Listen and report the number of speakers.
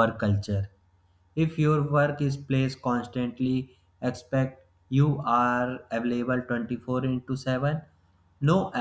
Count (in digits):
1